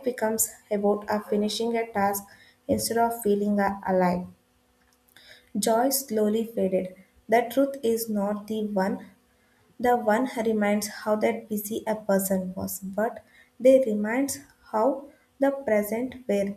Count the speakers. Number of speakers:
one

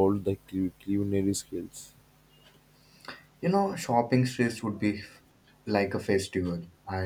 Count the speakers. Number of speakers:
two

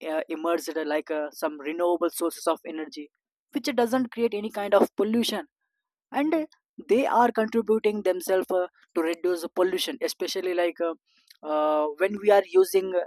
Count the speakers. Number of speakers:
one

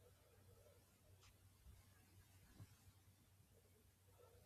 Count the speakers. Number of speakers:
zero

